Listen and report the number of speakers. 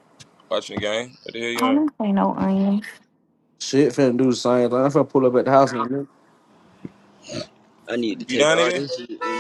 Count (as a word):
four